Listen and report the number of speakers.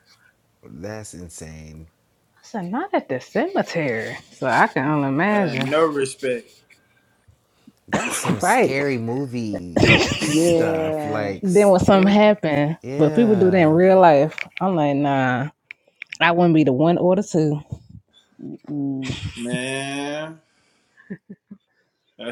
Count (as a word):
four